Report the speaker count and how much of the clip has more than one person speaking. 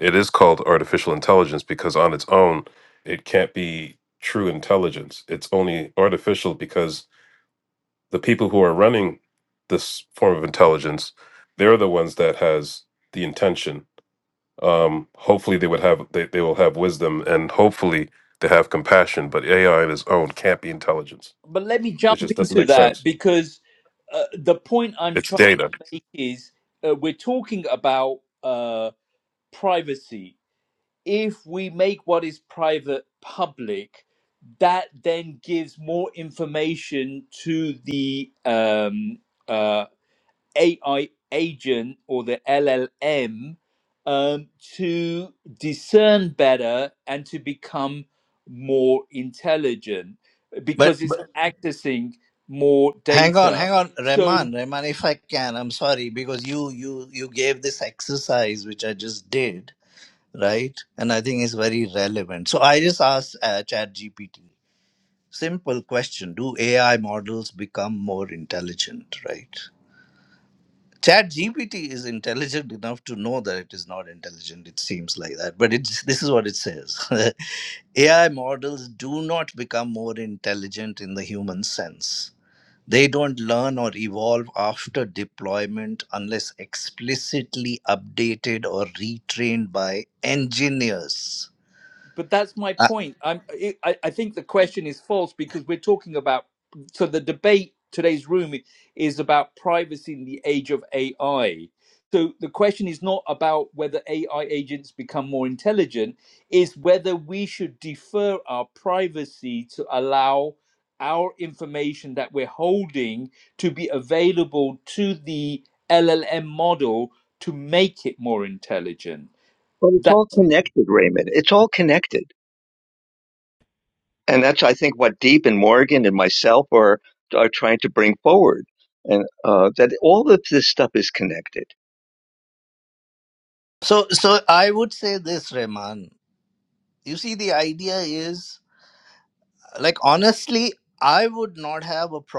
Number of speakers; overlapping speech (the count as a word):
four, about 2%